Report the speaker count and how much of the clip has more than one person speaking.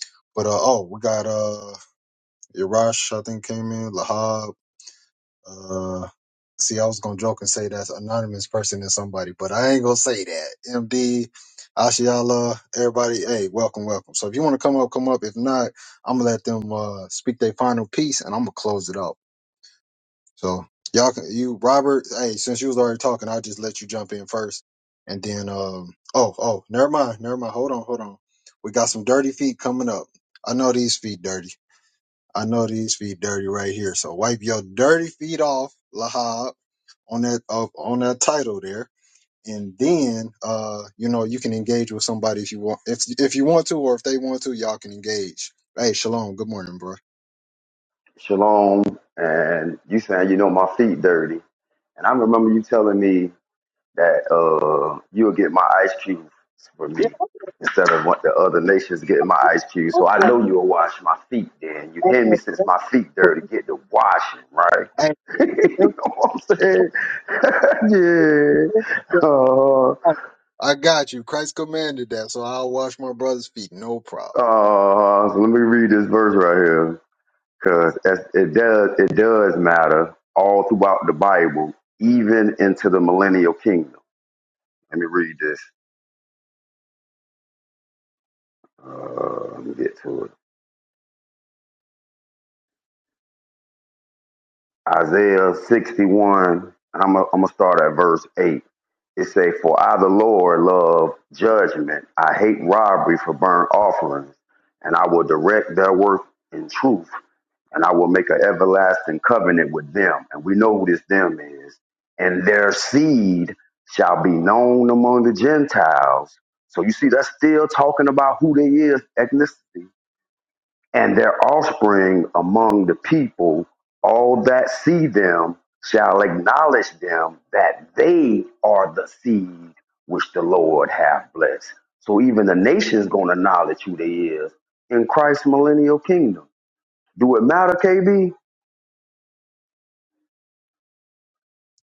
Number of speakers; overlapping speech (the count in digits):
2, under 1%